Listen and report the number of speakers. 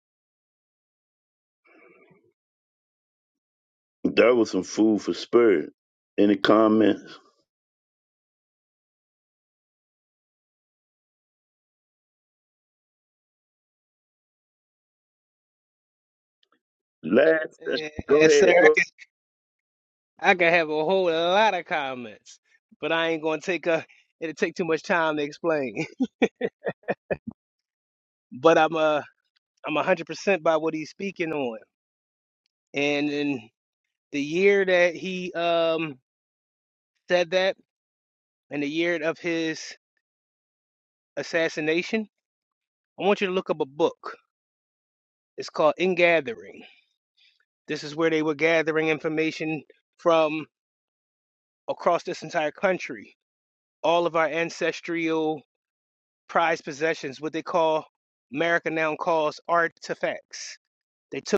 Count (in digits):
2